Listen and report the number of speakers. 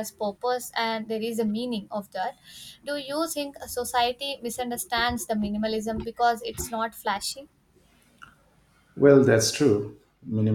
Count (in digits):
2